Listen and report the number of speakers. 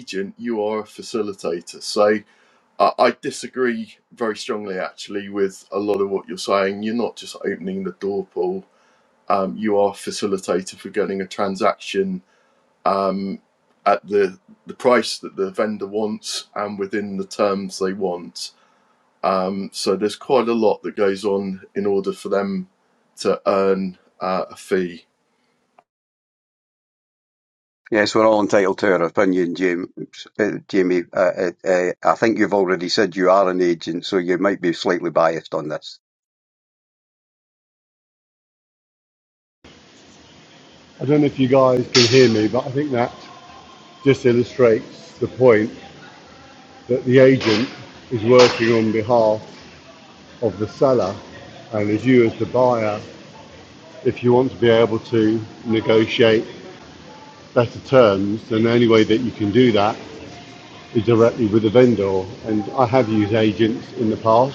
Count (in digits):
3